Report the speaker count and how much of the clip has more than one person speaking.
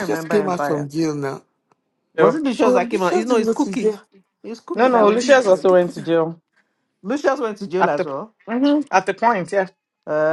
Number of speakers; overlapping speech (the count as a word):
three, about 37%